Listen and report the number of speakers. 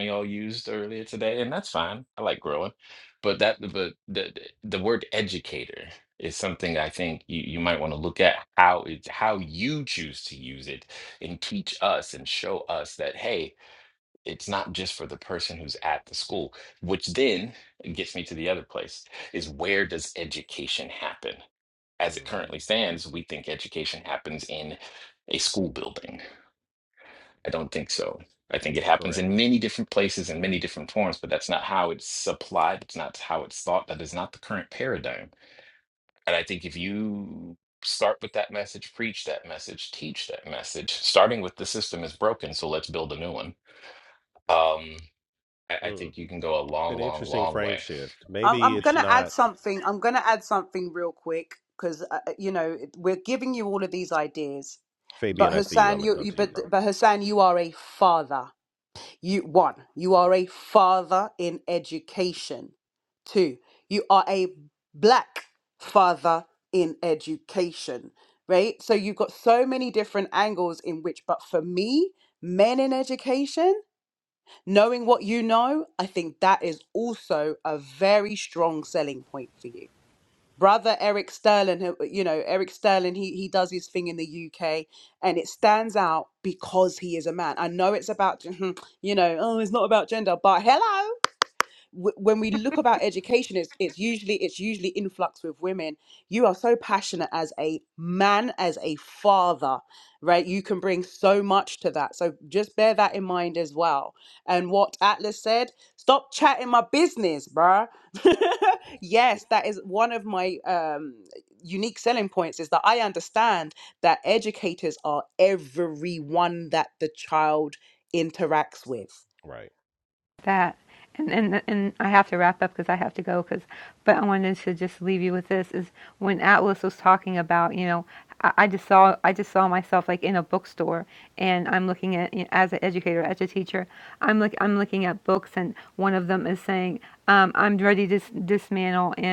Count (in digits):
4